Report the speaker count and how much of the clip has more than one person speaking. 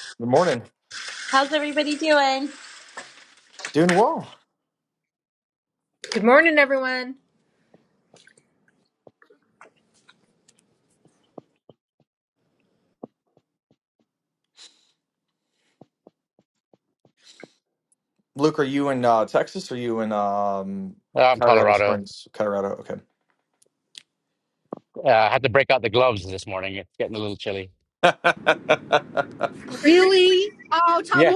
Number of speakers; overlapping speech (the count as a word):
five, about 3%